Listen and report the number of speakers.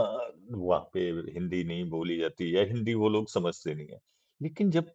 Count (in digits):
1